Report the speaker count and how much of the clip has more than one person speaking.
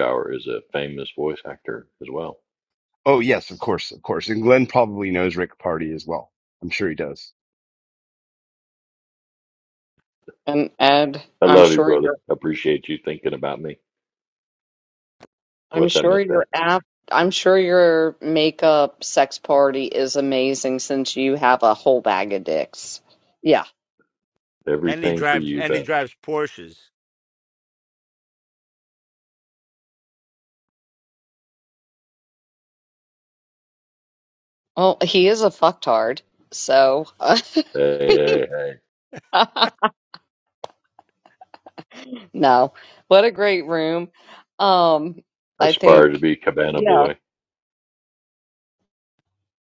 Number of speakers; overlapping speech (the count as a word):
four, about 7%